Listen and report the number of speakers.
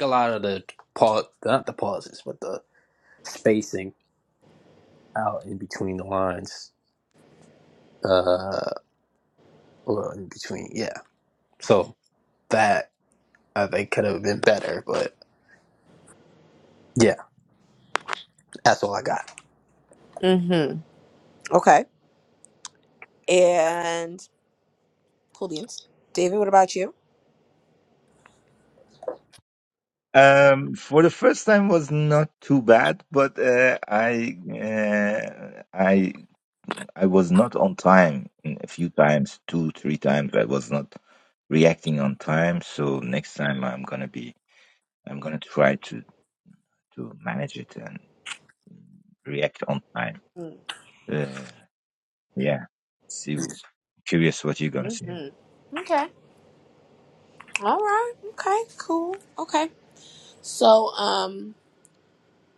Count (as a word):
three